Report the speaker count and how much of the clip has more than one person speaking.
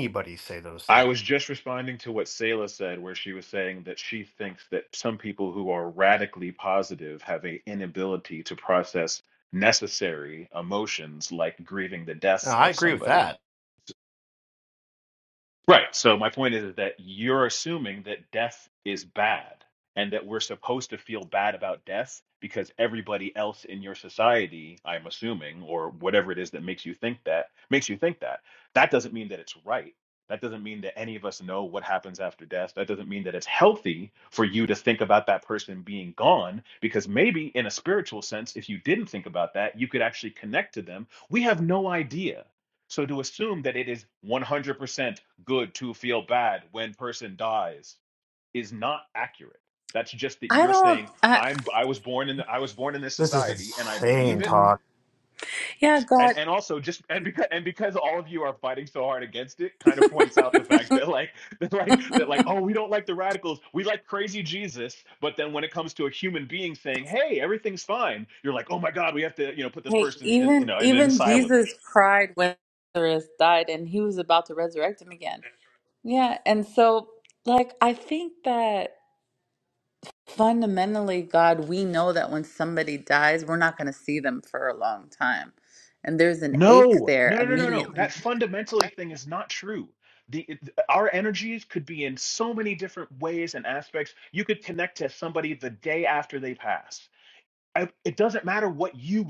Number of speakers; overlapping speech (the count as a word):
three, about 7%